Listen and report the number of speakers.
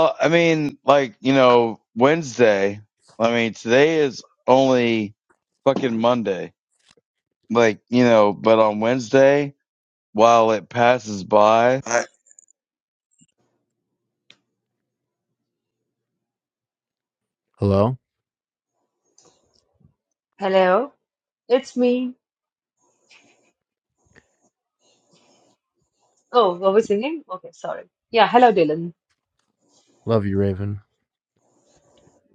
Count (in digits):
3